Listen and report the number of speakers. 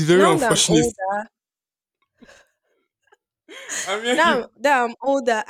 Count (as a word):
two